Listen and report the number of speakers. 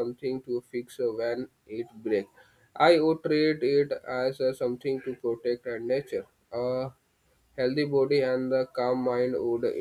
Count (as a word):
one